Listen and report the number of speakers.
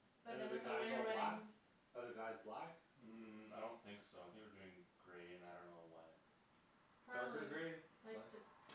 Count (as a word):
three